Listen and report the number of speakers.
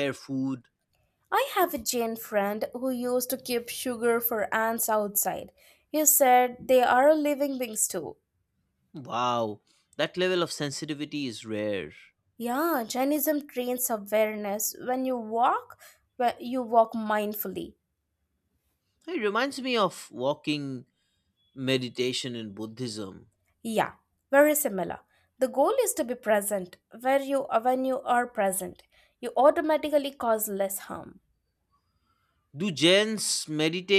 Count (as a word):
two